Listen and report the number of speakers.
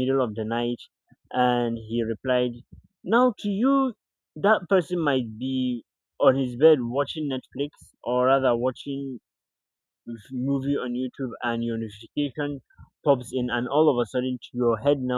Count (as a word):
one